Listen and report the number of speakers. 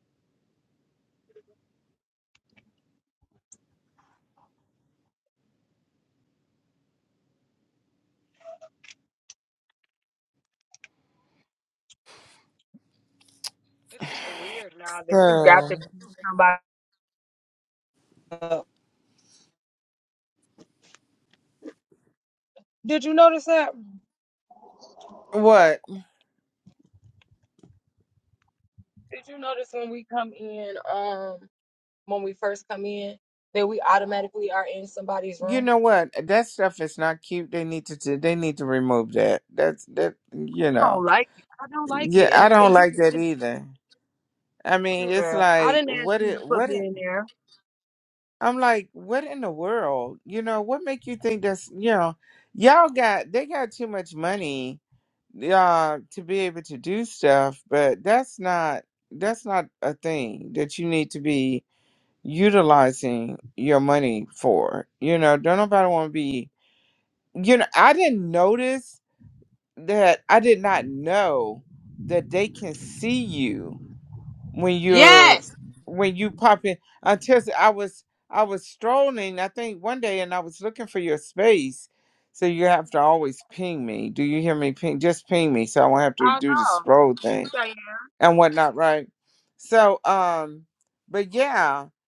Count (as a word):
two